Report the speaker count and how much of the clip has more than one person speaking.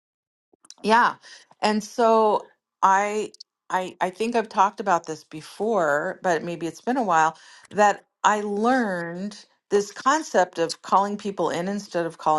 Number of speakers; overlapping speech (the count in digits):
1, no overlap